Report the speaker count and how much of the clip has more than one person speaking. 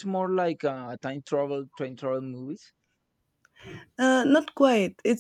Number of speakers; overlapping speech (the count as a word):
two, no overlap